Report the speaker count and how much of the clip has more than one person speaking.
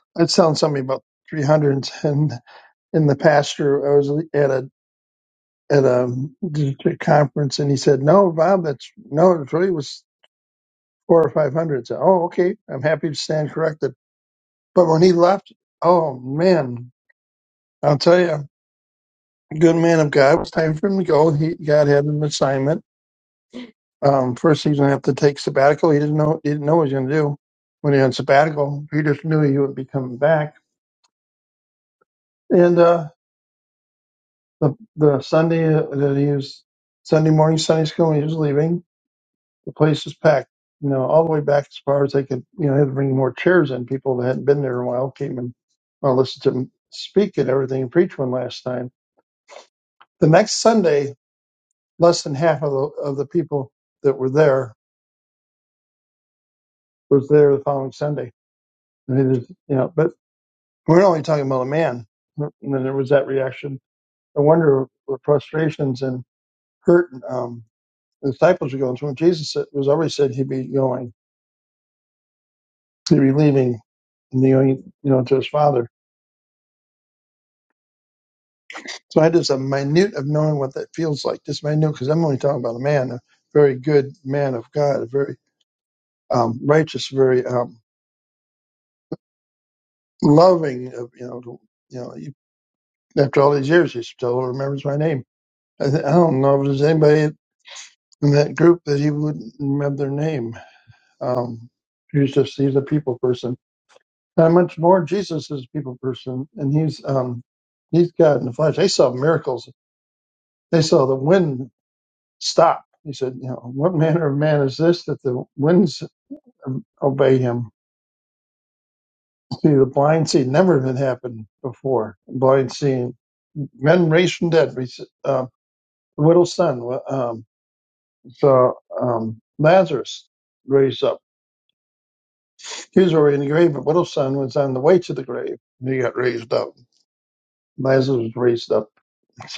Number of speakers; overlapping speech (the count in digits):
1, no overlap